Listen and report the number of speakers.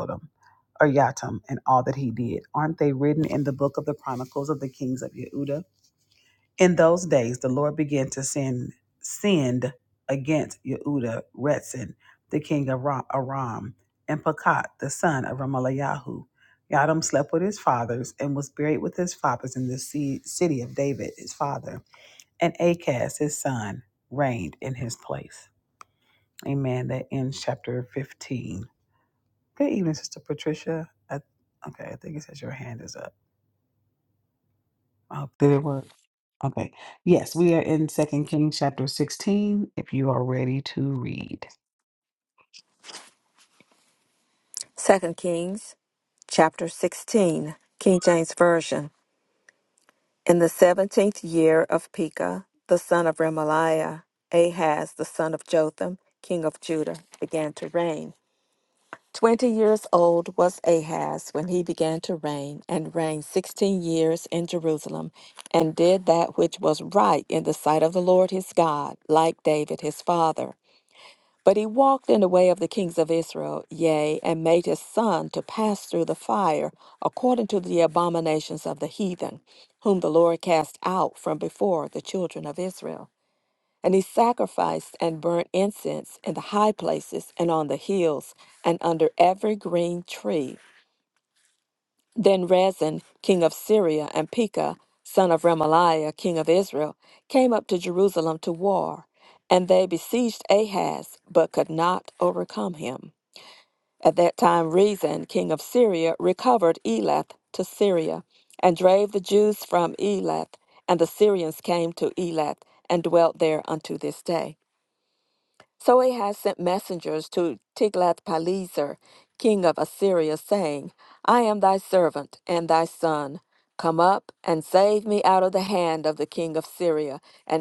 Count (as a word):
two